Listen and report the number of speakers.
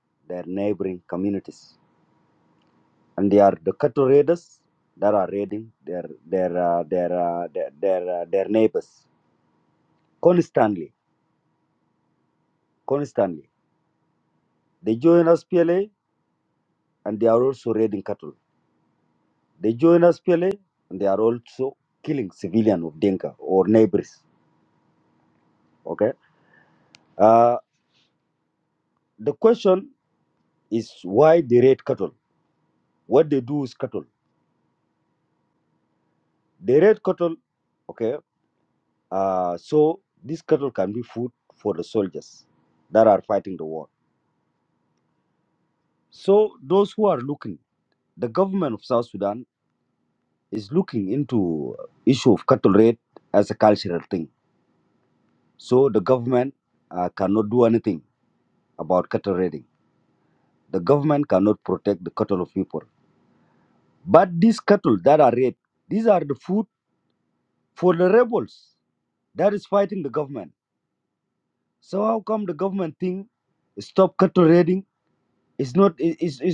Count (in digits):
1